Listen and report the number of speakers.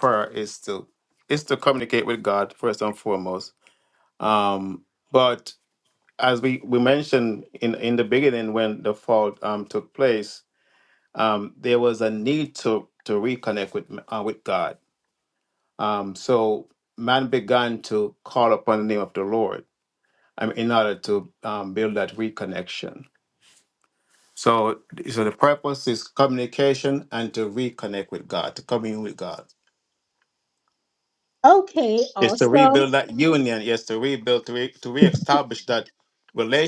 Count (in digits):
2